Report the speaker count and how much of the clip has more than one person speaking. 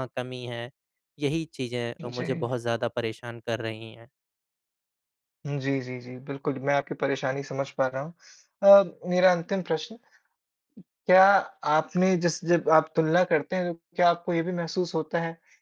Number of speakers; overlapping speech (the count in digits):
2, about 3%